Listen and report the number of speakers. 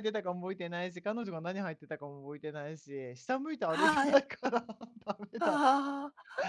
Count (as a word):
two